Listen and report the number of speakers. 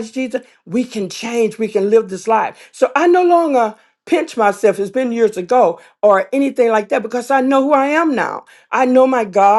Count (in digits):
1